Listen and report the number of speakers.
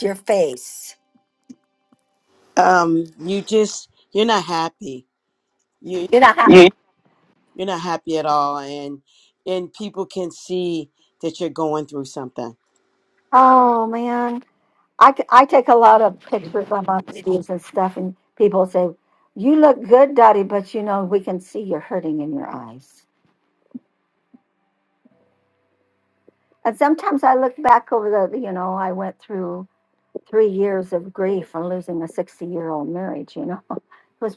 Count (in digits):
2